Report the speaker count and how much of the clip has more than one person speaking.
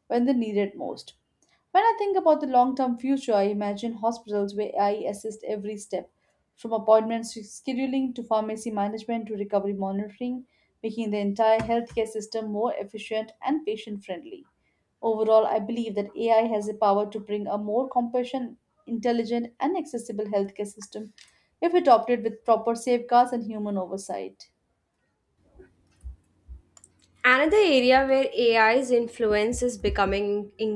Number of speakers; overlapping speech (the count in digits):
2, no overlap